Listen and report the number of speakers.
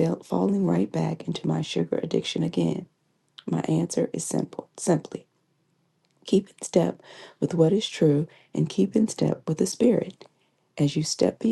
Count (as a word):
one